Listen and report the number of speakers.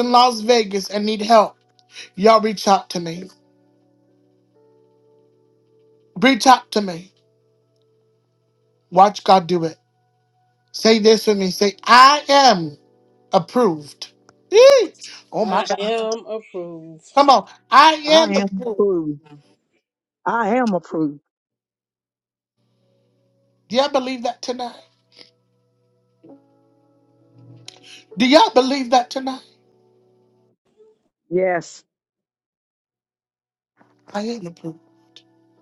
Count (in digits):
3